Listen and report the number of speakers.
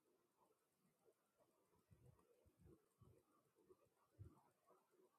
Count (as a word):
zero